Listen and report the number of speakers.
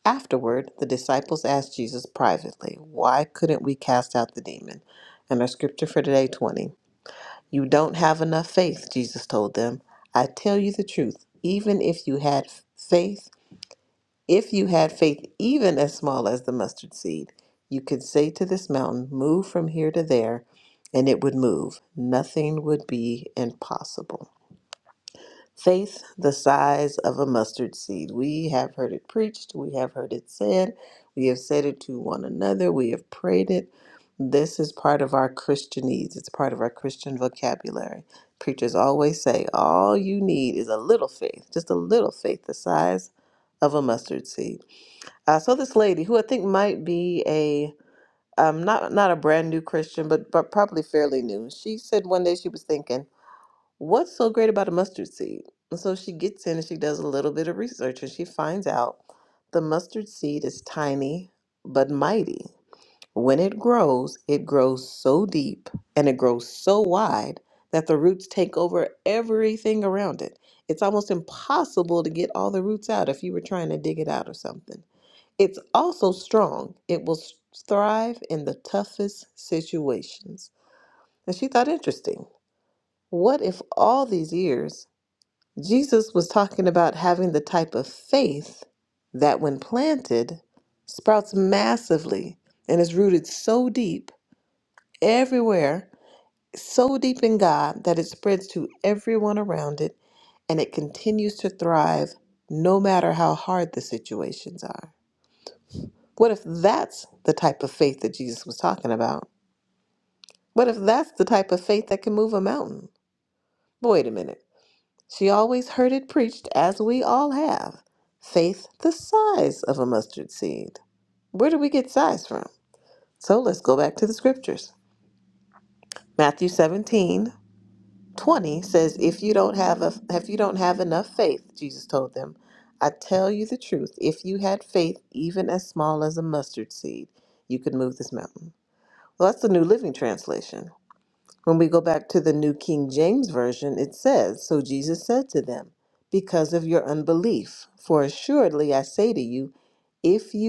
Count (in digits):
1